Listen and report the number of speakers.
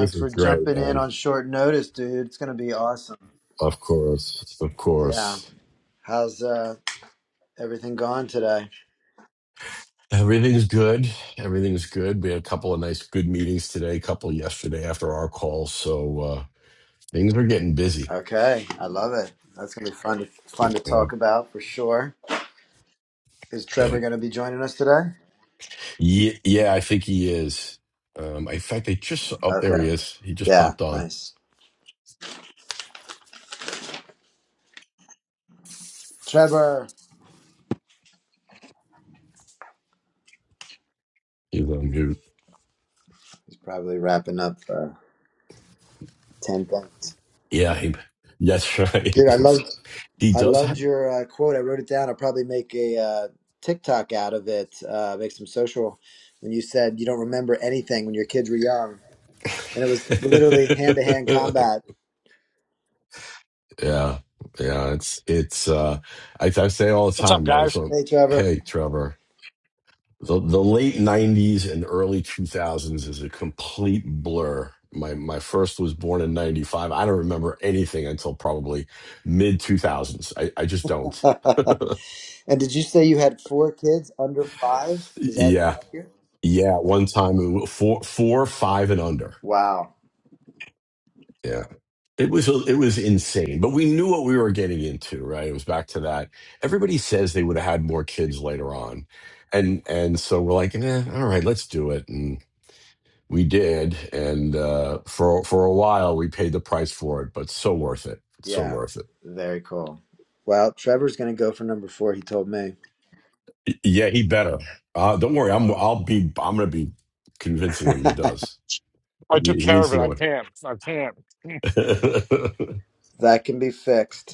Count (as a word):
three